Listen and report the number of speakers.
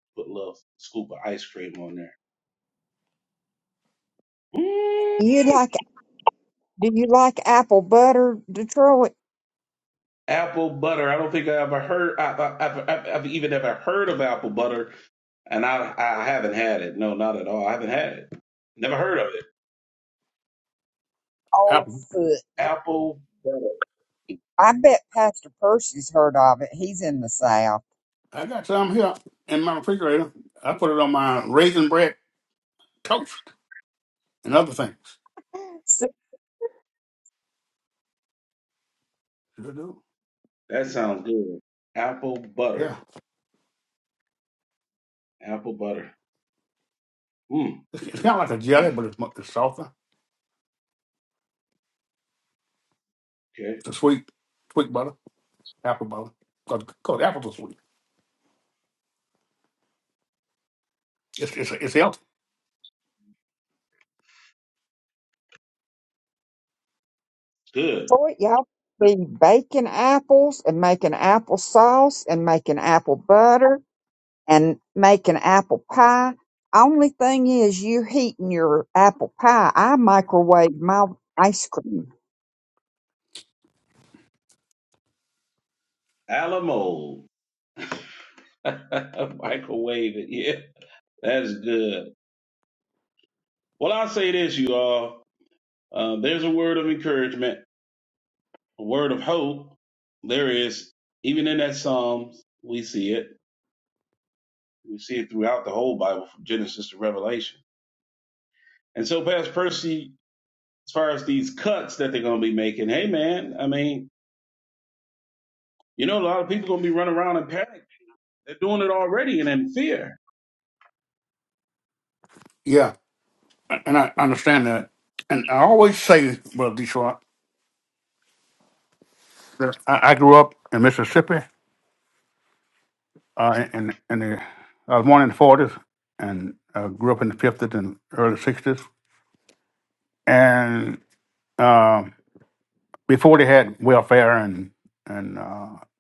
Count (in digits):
3